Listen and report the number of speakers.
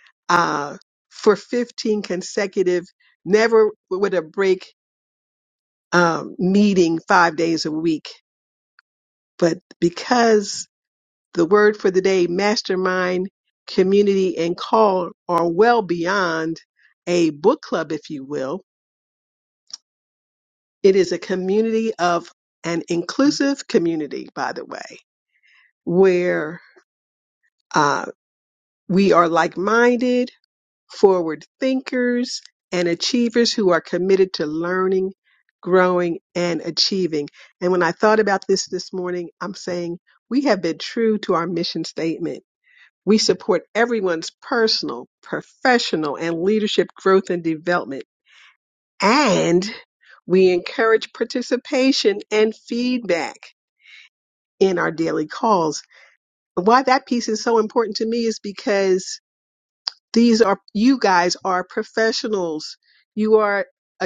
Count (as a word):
one